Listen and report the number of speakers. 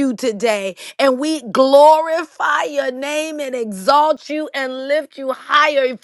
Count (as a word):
one